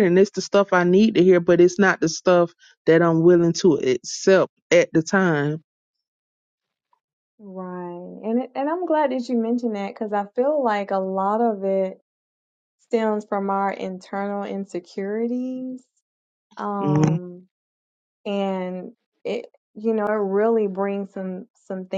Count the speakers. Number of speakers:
2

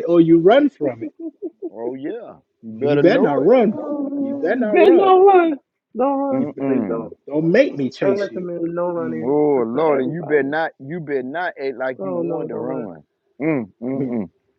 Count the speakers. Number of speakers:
3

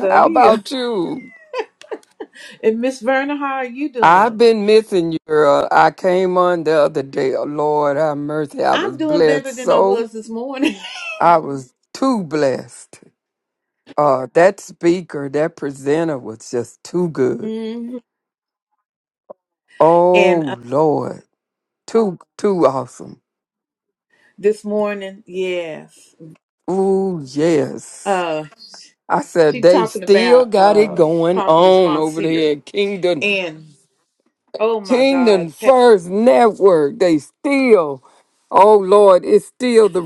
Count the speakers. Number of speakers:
2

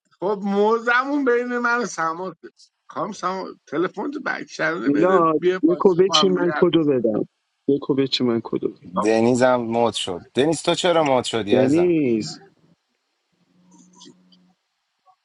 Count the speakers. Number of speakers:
3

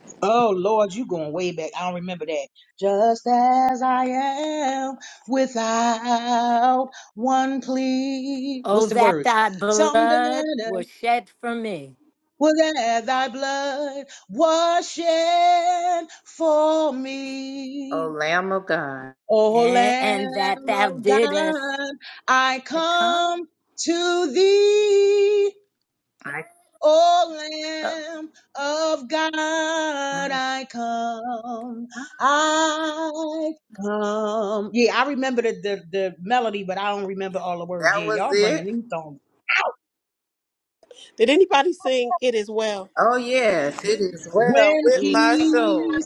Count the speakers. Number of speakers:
4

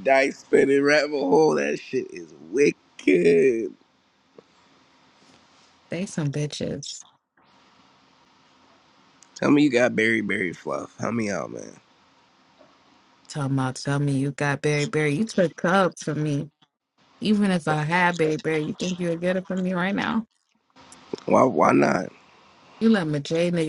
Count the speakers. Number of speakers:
2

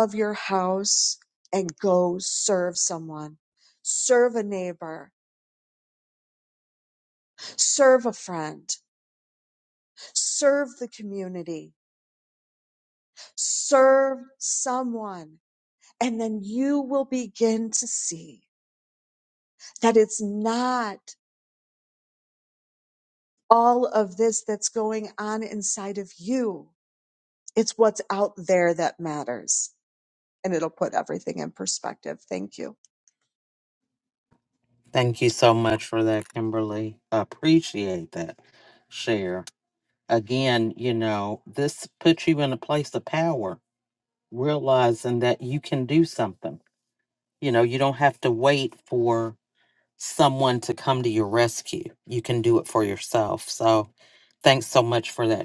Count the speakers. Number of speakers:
2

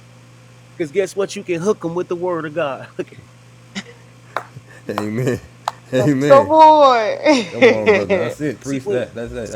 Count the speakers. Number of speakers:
3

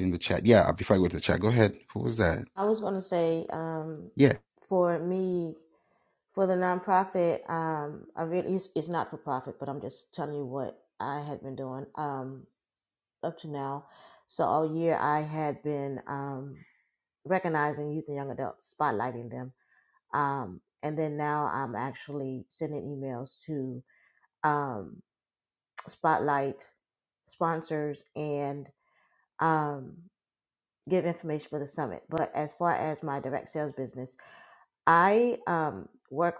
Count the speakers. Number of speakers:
2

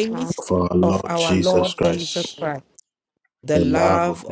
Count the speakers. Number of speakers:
2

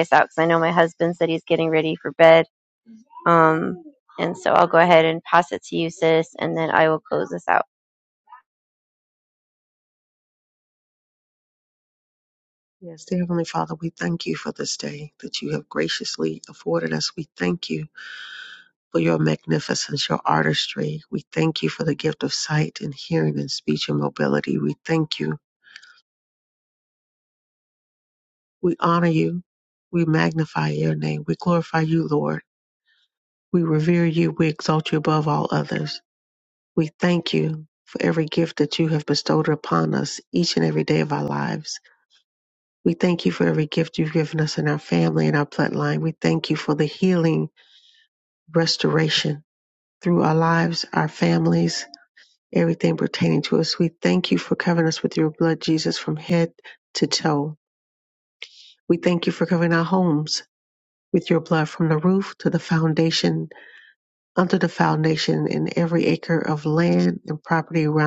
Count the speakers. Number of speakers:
2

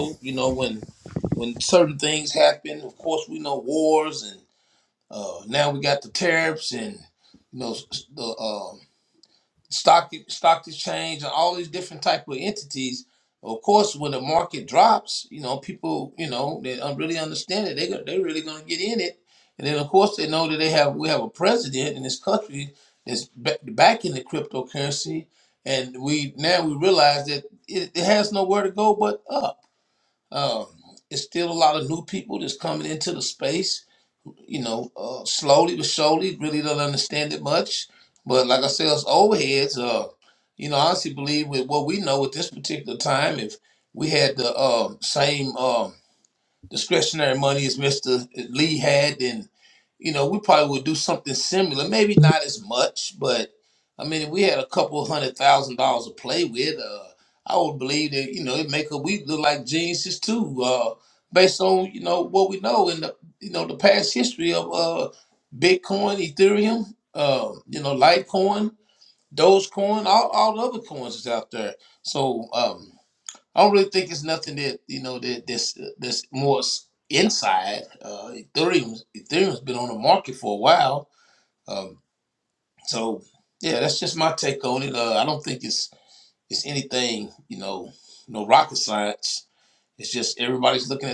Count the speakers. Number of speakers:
1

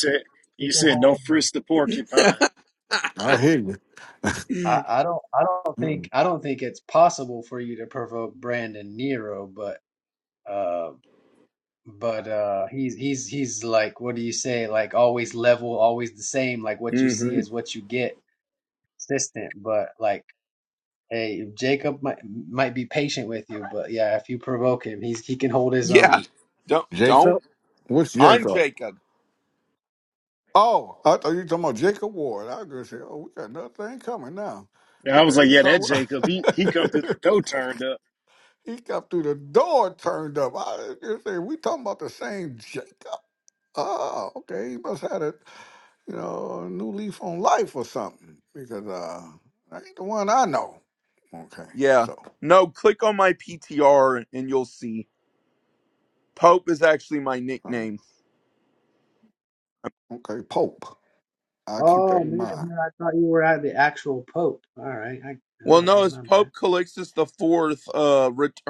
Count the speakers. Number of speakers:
4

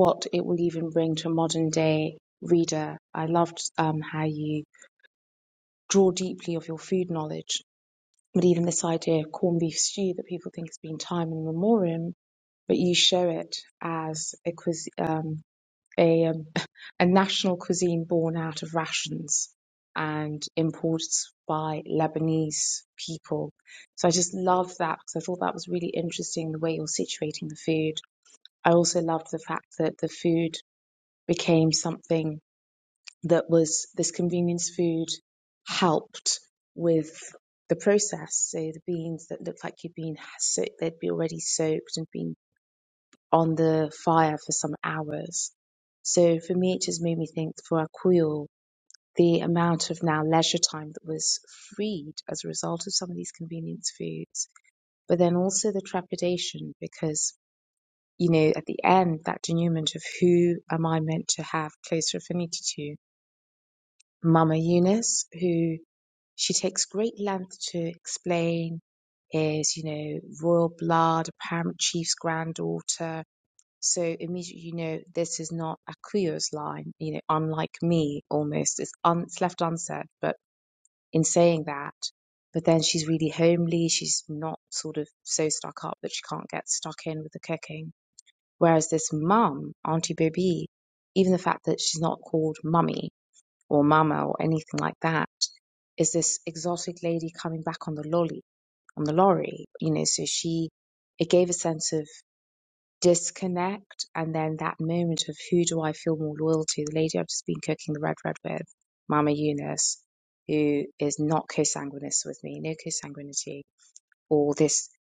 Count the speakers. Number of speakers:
1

